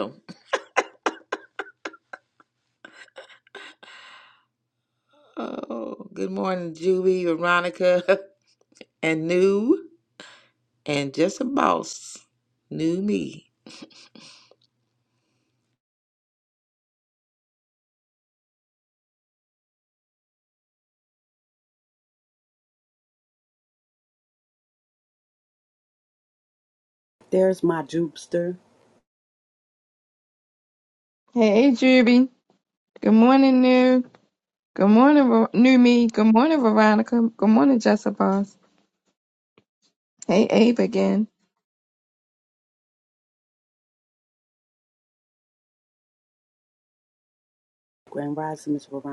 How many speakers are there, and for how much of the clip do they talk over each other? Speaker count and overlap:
3, no overlap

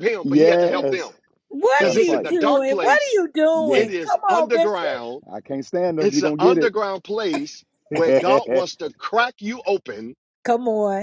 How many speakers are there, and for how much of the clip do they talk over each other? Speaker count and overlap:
3, about 41%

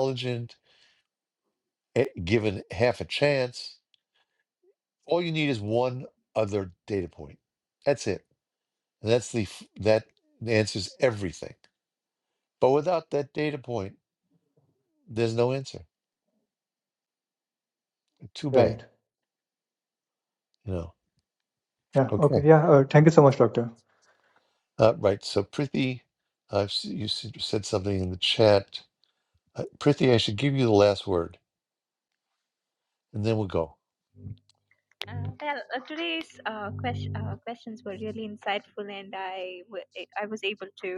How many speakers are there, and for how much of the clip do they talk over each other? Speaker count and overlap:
3, about 1%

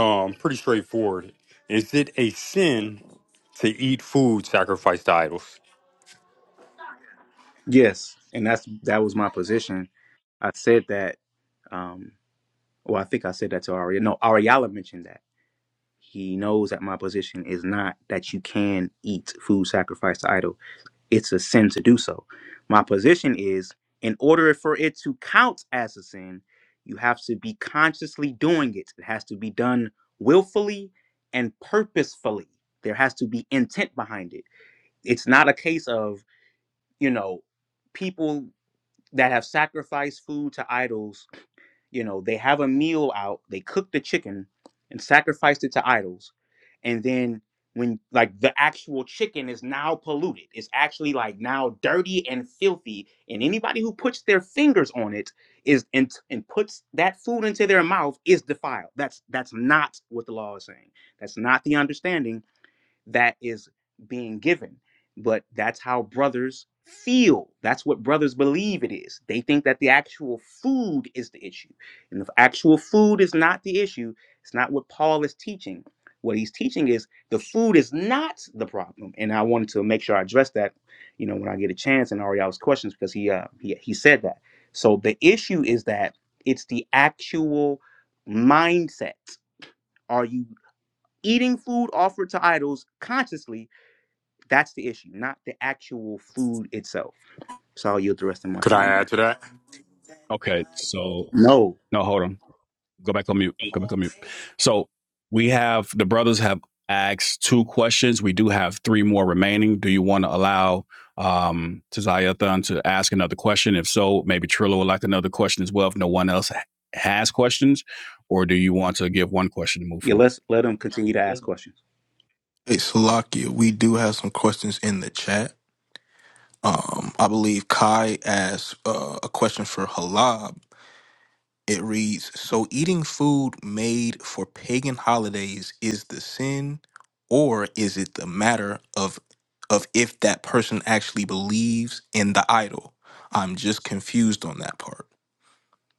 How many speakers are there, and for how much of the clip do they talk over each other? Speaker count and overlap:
4, under 1%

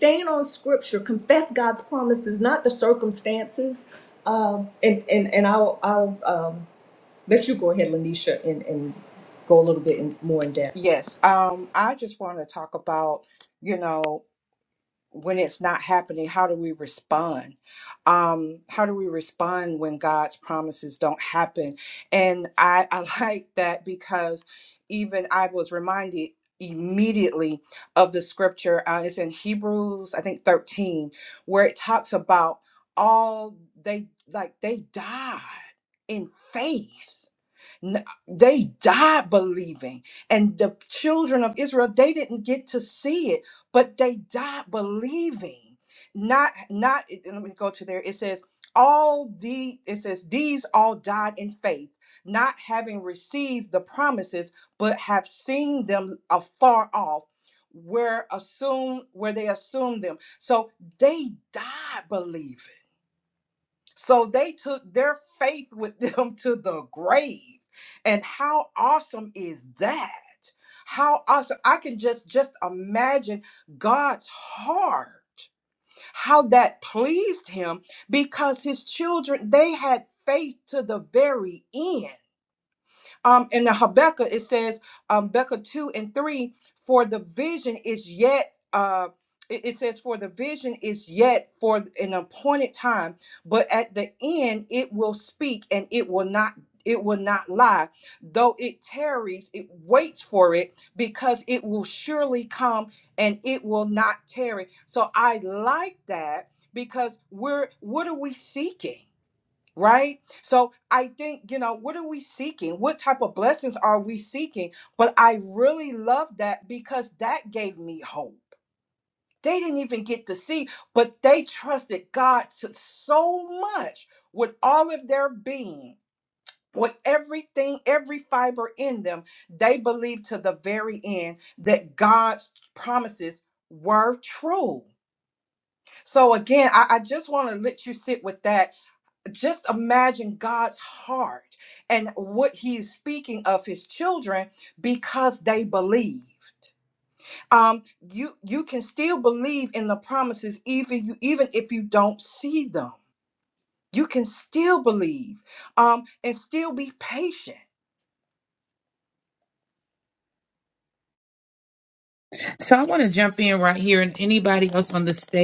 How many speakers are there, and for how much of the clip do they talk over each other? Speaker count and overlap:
3, no overlap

